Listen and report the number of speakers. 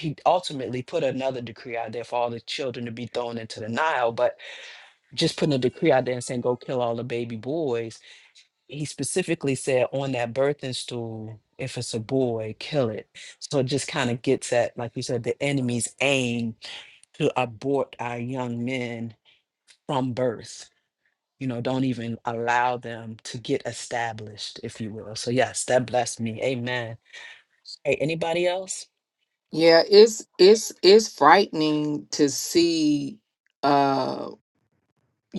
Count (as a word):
two